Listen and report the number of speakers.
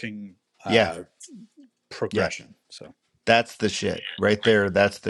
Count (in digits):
2